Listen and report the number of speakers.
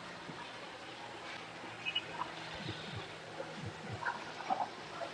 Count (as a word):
zero